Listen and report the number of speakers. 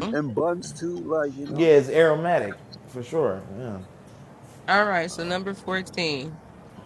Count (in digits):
3